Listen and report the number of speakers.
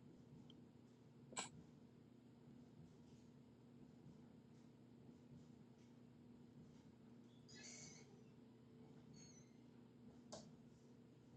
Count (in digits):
0